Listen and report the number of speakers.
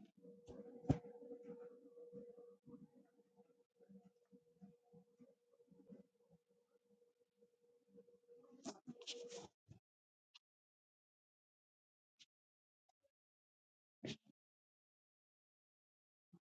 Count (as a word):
zero